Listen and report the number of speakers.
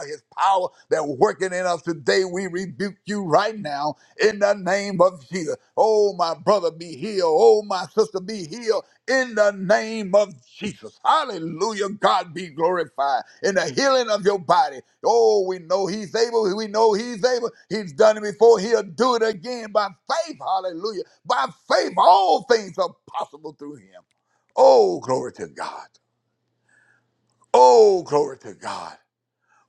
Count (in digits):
1